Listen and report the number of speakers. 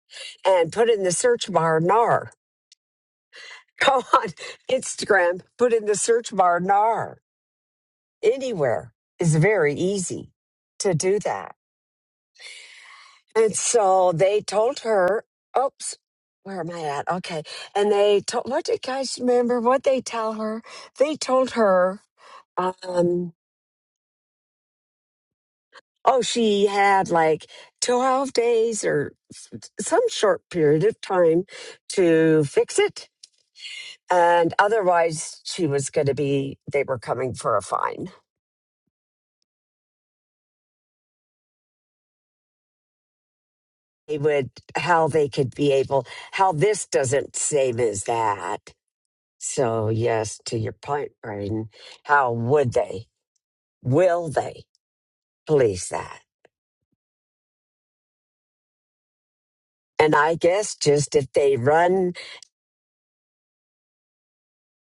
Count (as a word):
one